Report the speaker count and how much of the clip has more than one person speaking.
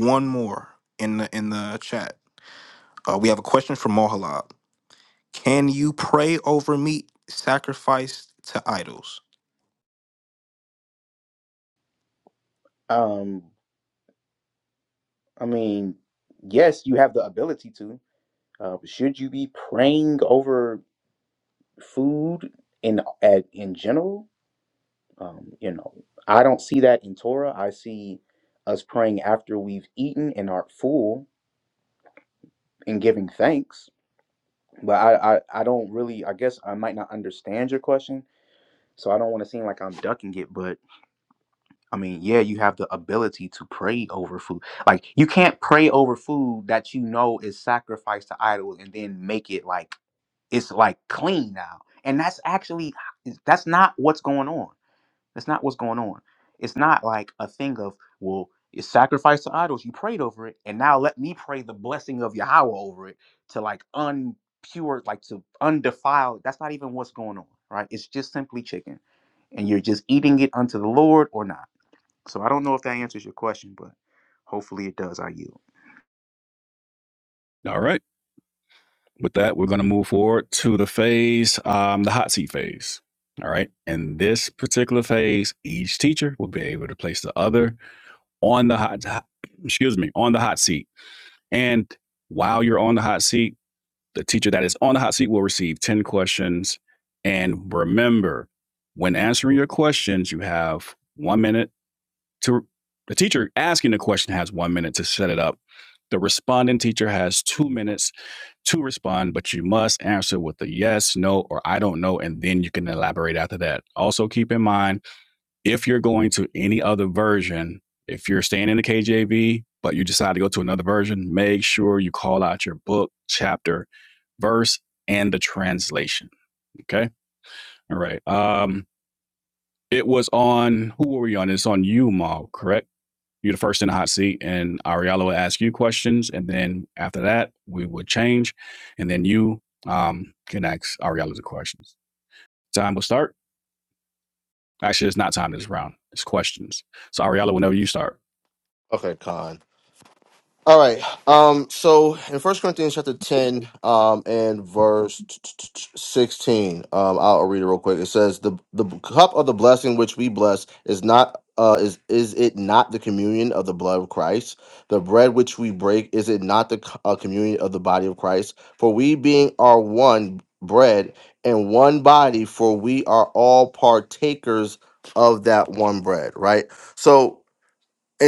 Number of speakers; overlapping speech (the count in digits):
4, no overlap